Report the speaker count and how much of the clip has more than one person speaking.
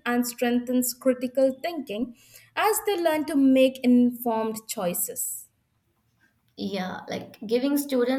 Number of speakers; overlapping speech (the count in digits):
2, no overlap